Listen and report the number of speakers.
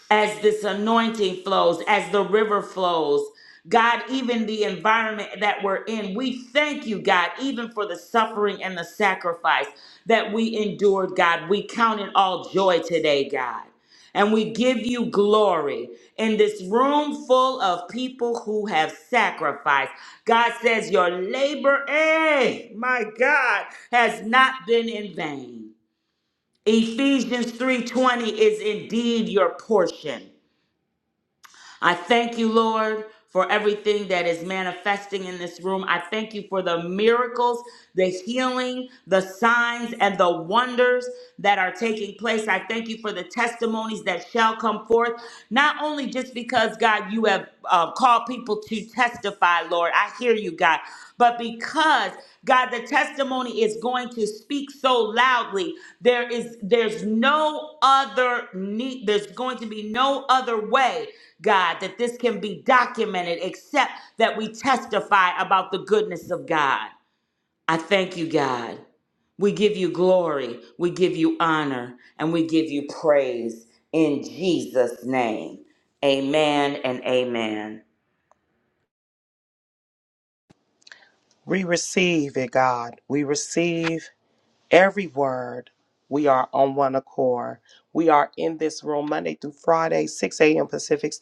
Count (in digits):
2